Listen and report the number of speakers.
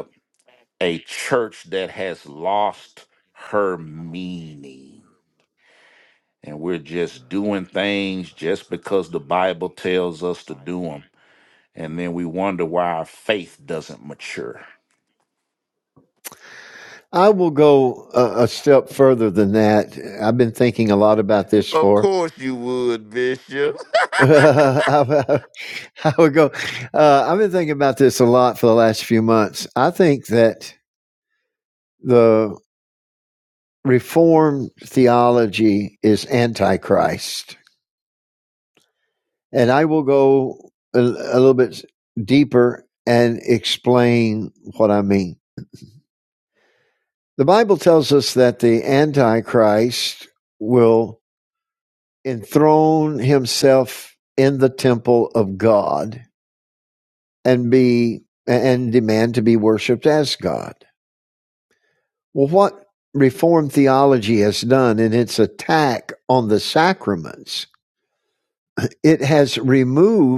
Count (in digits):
2